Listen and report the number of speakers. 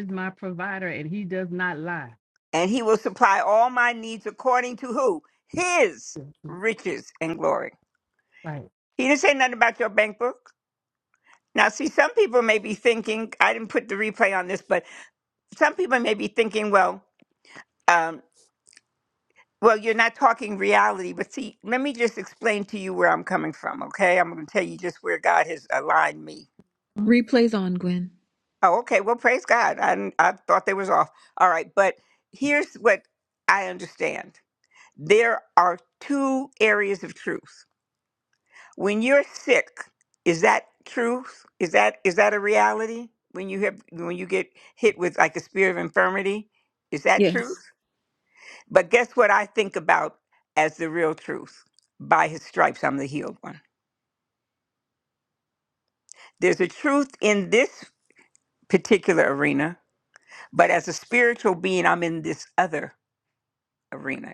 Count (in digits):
3